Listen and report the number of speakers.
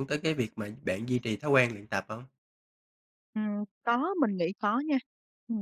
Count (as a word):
two